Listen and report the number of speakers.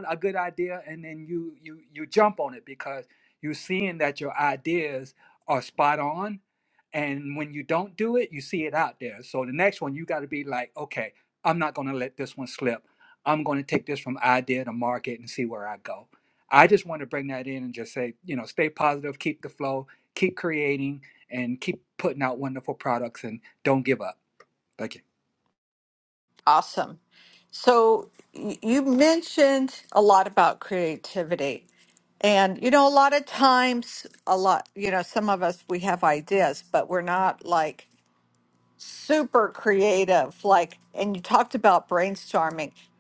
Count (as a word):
two